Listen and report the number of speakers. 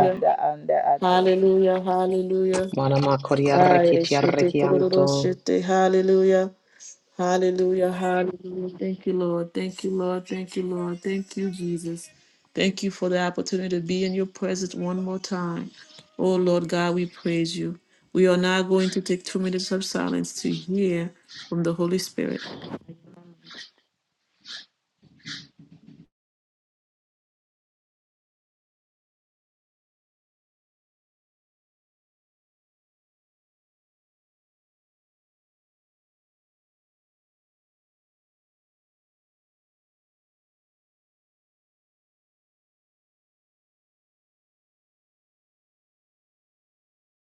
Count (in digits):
3